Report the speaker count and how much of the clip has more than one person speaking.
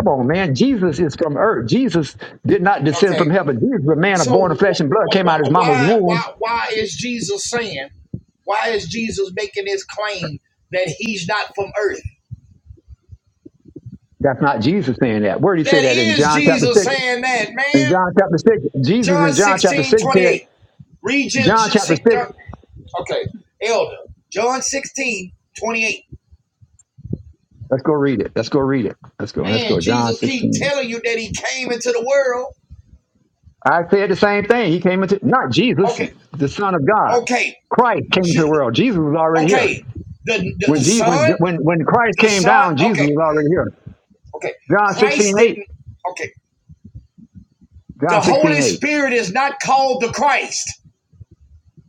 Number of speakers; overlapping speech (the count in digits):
2, about 18%